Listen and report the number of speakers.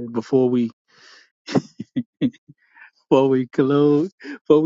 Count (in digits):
1